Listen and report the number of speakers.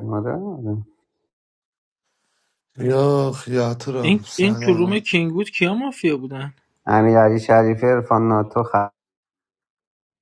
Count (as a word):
three